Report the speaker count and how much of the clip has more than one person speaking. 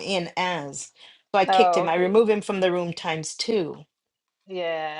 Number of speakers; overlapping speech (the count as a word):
two, about 14%